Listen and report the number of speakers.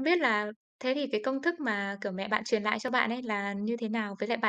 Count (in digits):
1